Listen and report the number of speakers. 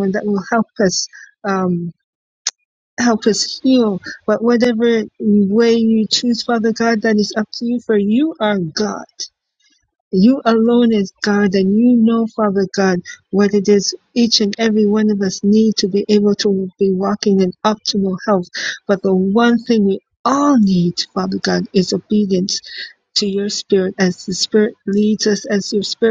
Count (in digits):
1